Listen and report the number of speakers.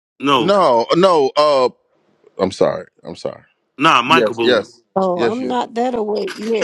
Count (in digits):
3